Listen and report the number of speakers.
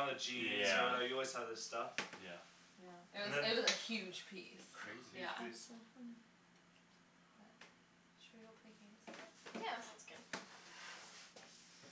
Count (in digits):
4